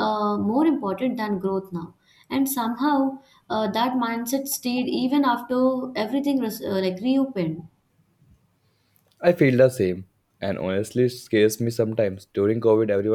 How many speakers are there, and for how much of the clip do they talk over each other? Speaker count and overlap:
2, no overlap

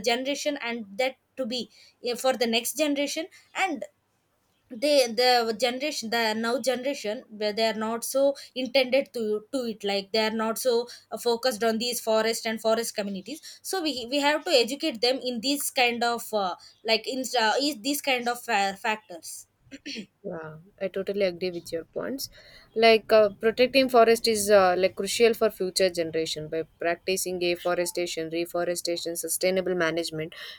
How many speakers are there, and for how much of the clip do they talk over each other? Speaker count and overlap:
2, no overlap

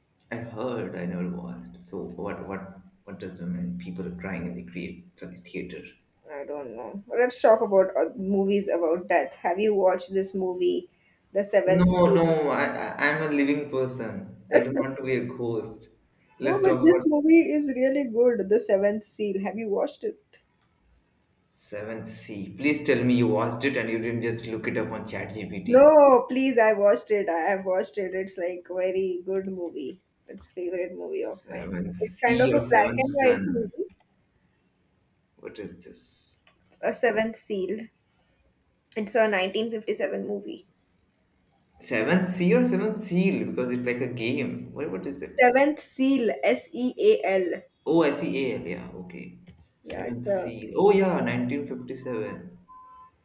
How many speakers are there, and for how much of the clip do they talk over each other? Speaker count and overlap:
2, about 8%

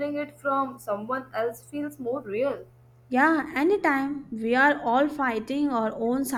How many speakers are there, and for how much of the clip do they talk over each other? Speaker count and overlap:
2, no overlap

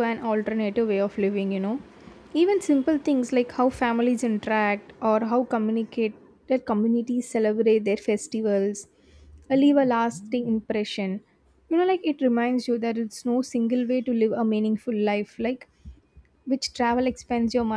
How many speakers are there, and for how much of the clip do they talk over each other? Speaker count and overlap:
1, no overlap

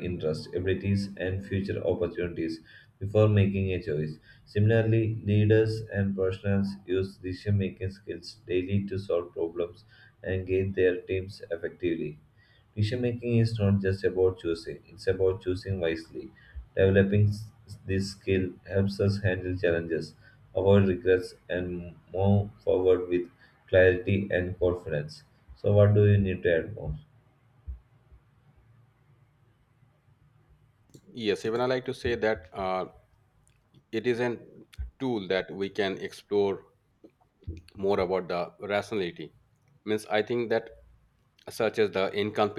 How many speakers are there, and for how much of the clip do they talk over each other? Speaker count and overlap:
2, no overlap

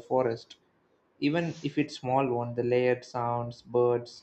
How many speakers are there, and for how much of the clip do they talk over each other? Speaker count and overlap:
1, no overlap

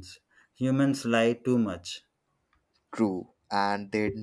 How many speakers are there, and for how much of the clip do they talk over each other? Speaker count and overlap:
2, no overlap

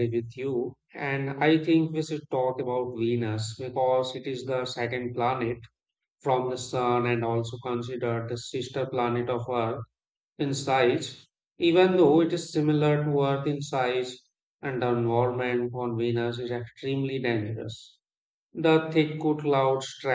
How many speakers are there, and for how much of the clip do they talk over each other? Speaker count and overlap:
1, no overlap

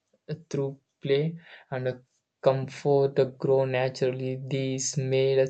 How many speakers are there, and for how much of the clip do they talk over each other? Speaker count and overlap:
1, no overlap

